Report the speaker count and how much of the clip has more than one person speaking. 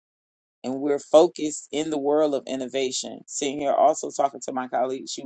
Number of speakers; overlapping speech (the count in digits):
1, no overlap